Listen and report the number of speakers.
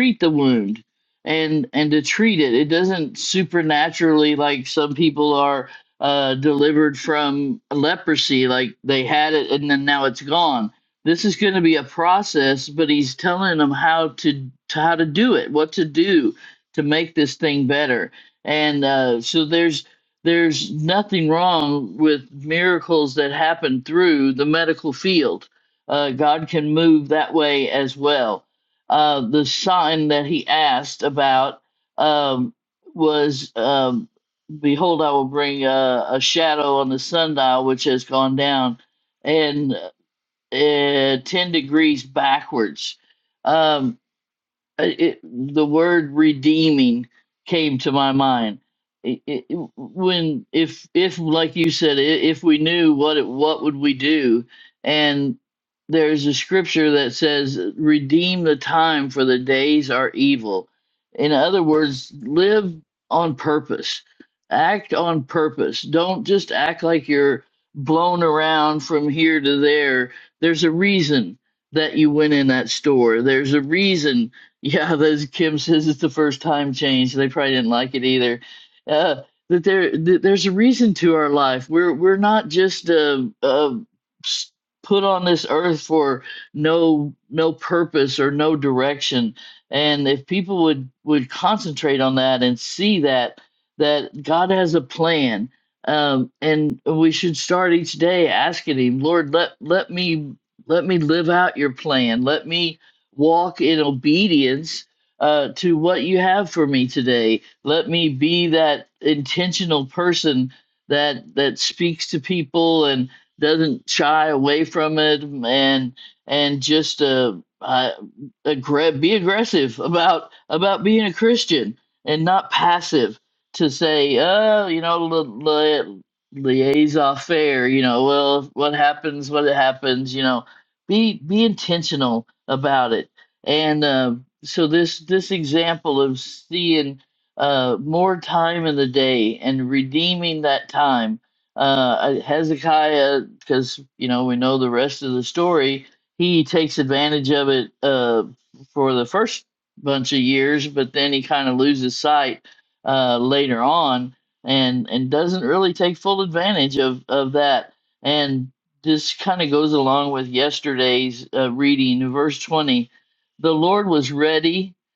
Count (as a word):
one